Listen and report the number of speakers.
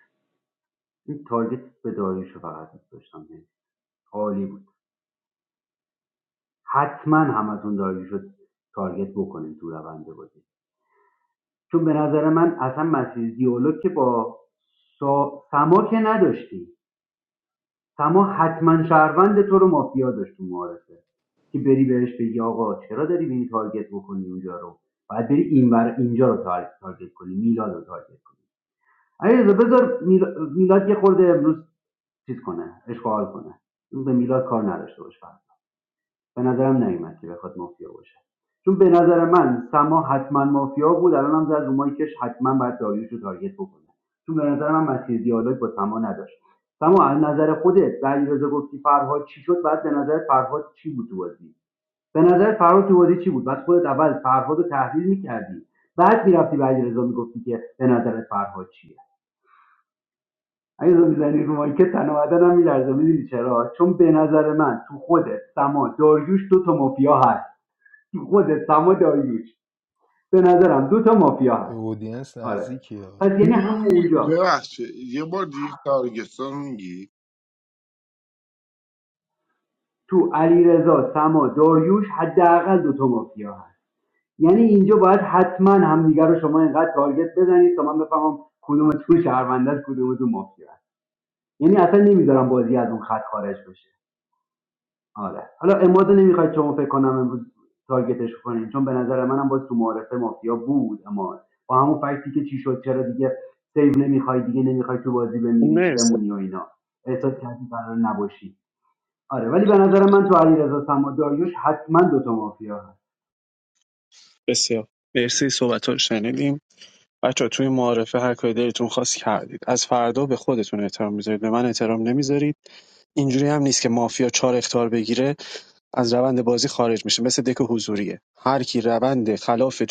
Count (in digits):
4